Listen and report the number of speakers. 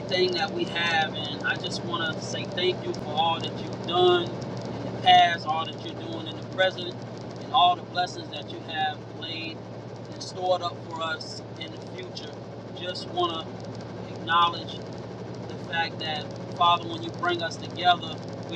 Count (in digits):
1